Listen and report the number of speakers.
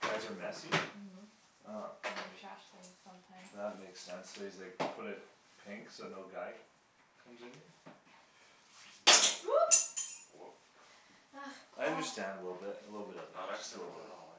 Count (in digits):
4